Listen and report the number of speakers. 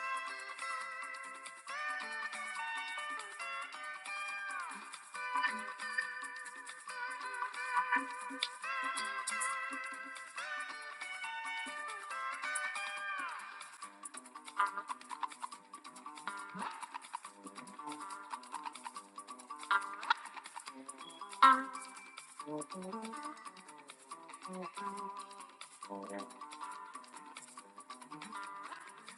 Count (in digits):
0